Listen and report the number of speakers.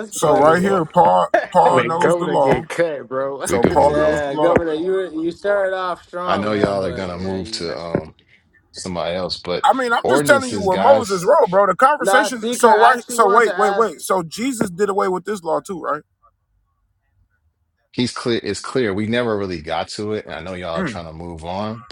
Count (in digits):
4